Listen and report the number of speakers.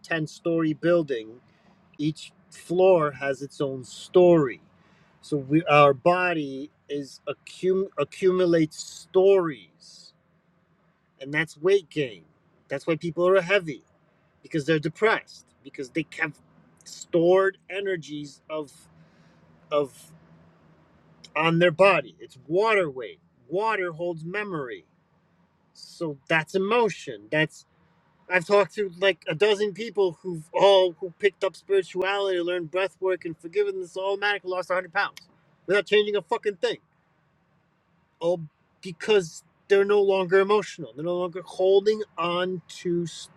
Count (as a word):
one